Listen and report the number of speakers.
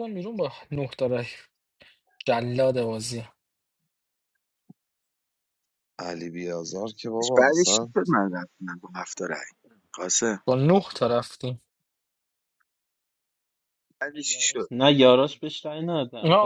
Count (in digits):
4